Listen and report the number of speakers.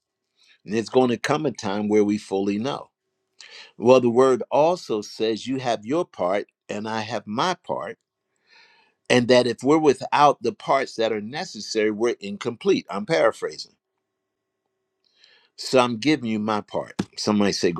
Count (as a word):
one